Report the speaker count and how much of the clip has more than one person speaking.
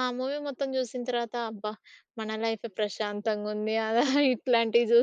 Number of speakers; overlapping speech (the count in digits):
1, no overlap